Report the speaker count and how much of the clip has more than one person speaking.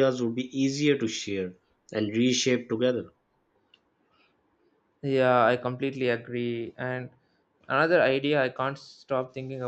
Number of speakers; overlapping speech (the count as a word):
two, no overlap